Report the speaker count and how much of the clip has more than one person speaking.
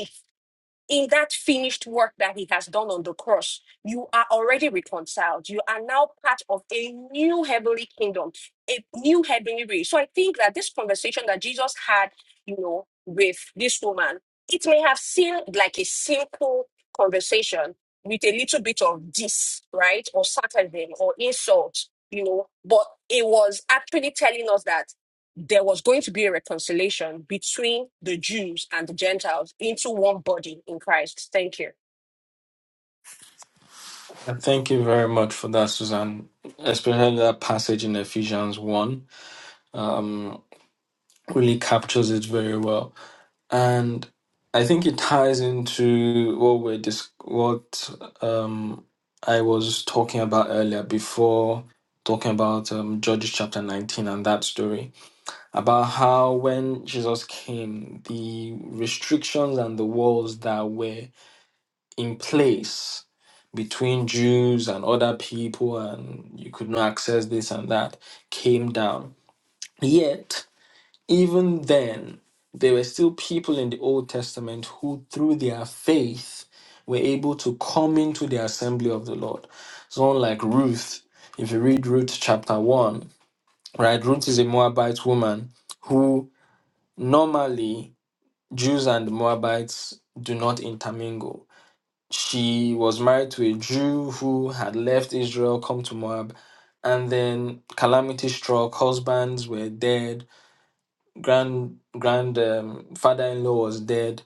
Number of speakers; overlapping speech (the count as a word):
two, no overlap